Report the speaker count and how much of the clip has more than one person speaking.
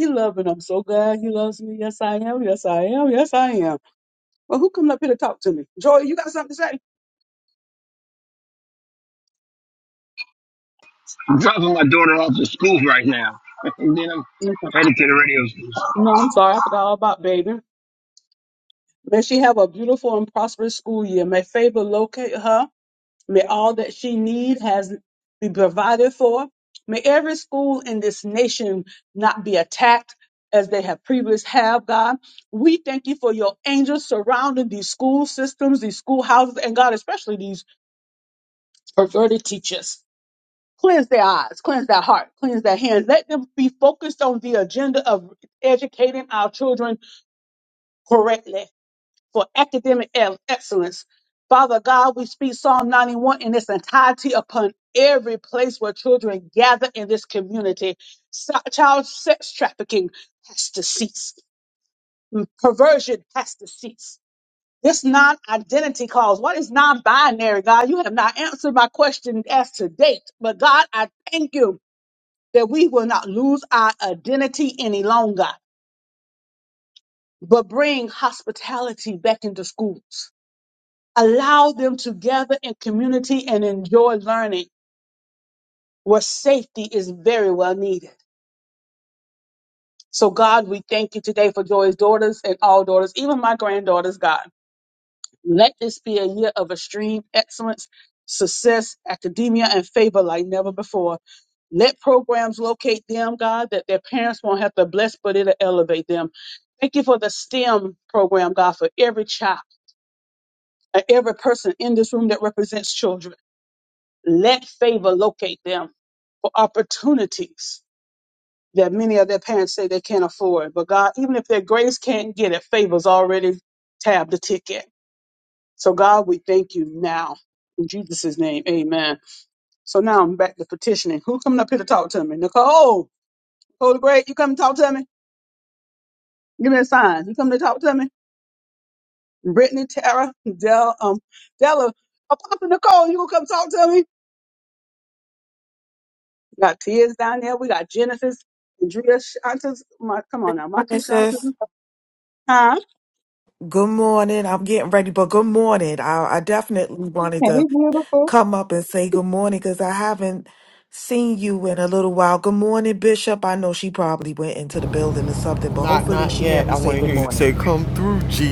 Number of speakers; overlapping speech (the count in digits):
4, about 1%